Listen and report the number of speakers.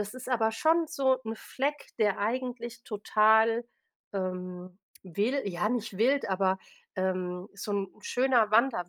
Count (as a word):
one